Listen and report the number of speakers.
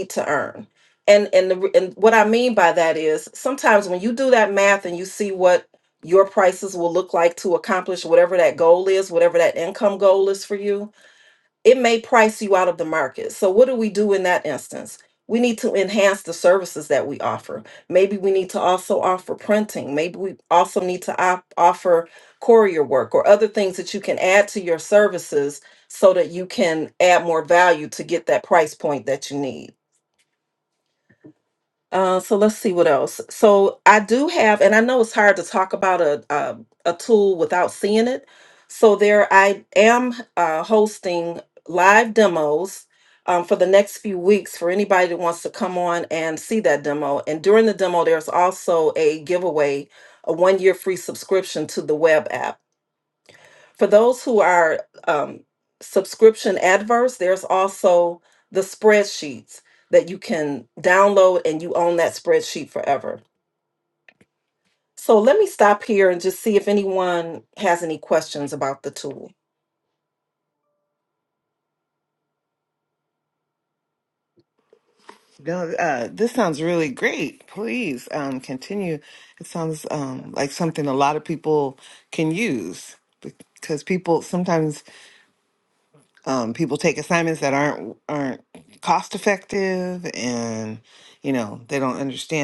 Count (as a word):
two